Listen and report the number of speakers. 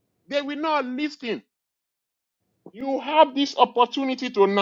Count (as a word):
one